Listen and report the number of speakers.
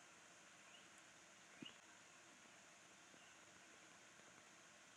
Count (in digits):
0